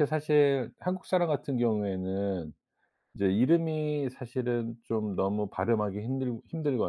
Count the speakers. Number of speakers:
one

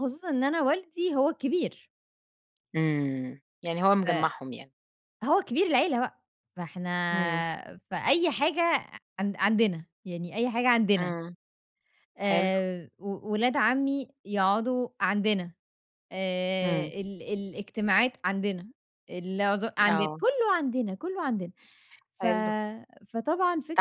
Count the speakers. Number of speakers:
two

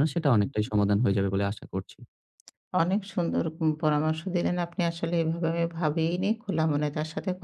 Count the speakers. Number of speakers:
two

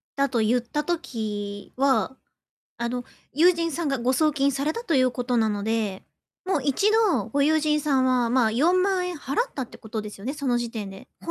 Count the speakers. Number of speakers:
one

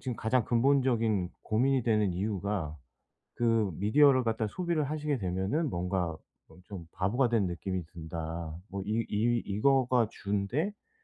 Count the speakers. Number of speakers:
one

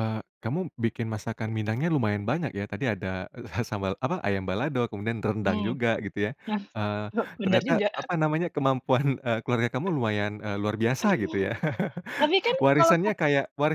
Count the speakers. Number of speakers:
two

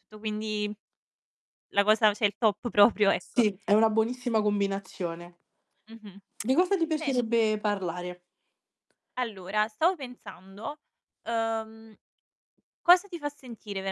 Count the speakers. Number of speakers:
two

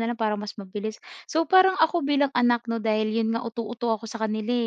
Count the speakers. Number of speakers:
one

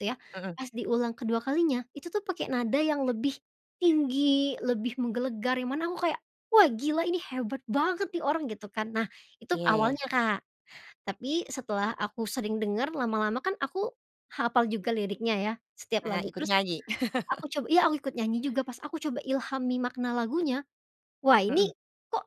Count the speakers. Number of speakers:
two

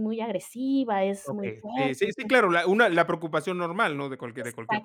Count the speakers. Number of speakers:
two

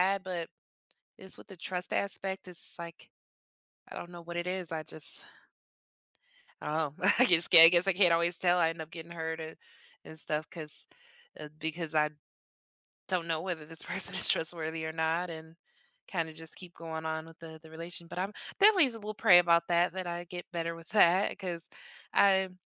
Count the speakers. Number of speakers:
one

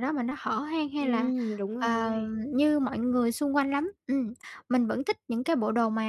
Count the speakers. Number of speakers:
two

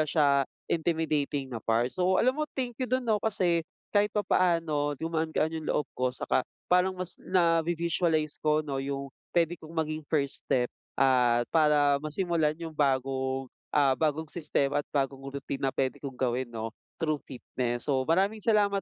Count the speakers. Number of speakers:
one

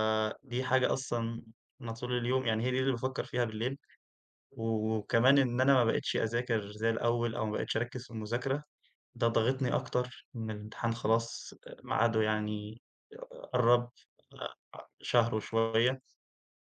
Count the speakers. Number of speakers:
one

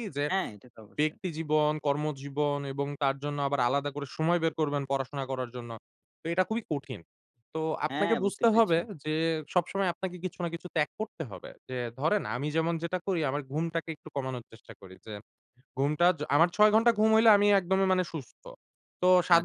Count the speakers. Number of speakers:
two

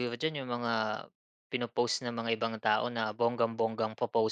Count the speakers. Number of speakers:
one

